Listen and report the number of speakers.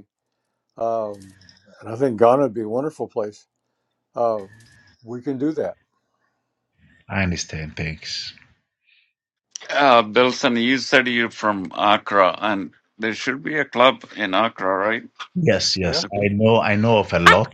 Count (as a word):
three